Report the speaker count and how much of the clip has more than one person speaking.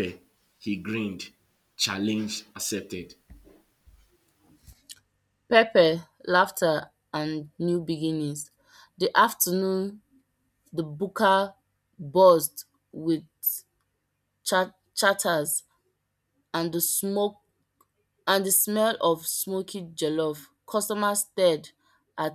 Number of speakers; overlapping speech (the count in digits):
2, no overlap